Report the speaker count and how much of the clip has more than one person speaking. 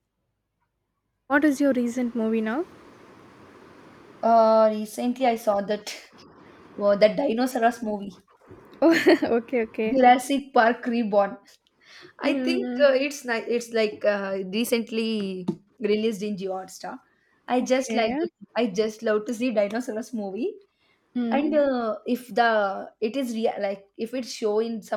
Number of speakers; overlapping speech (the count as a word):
two, about 6%